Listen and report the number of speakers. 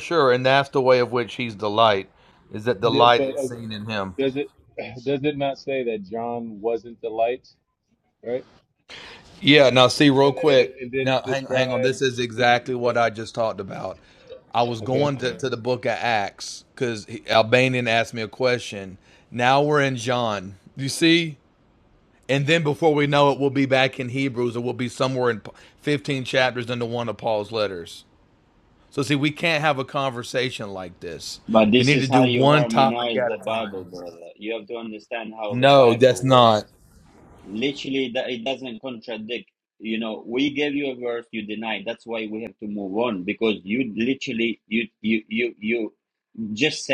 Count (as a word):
three